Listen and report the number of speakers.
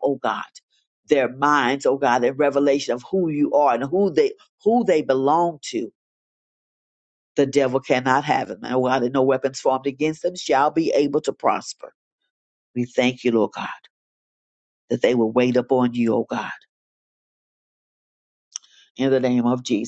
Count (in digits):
1